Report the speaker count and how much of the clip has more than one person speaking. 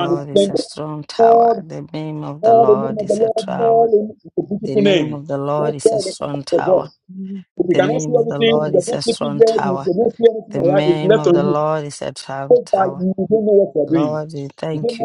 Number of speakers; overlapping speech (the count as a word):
two, about 57%